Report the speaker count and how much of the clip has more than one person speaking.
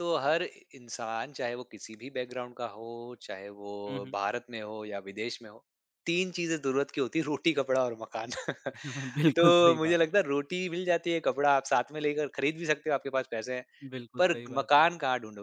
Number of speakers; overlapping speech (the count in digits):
2, about 8%